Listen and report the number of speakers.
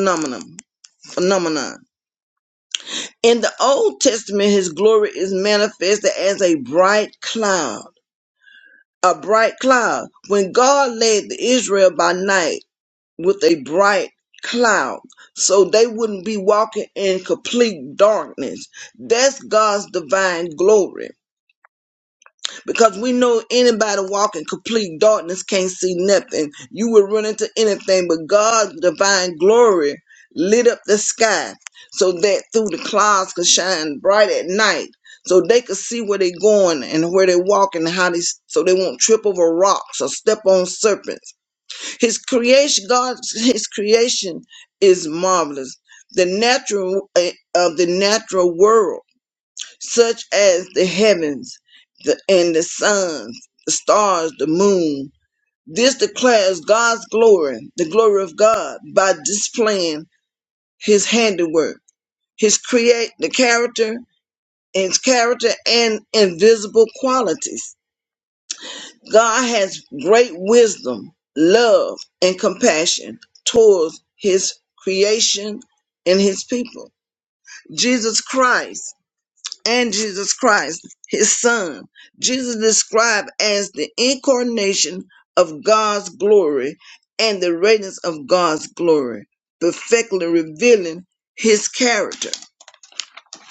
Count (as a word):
one